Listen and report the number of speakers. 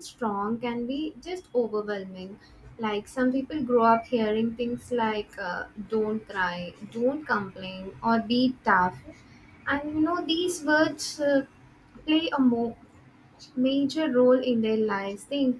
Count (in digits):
1